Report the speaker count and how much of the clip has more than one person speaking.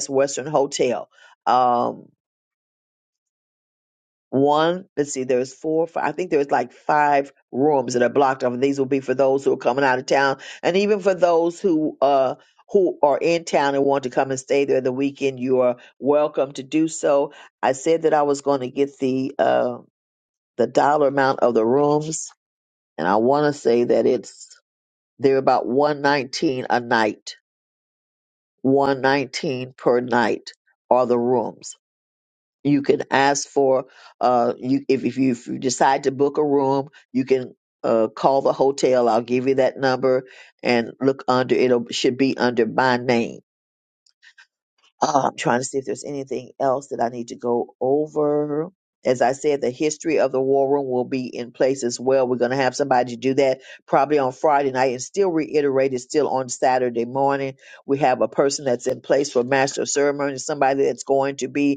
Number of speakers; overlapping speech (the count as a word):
one, no overlap